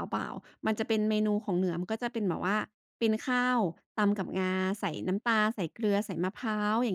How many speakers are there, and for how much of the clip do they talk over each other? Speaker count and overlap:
one, no overlap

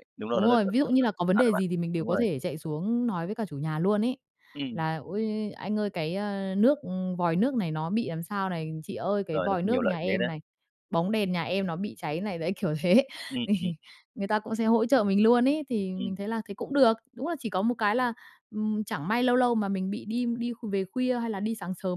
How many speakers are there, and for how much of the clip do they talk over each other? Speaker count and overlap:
two, about 8%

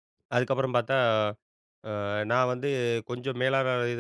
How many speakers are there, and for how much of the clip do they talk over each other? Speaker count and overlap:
one, no overlap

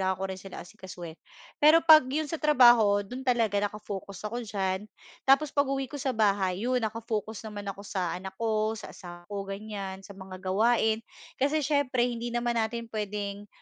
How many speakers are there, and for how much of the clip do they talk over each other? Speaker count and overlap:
one, no overlap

